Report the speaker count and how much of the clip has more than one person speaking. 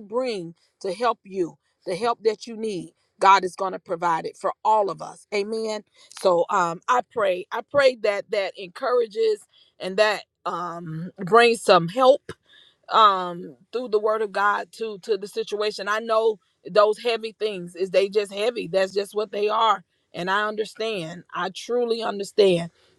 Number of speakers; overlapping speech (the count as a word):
one, no overlap